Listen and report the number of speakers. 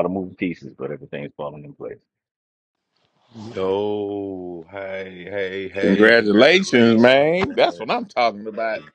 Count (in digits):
3